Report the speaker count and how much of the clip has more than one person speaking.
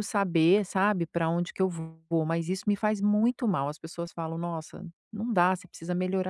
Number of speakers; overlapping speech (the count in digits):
1, no overlap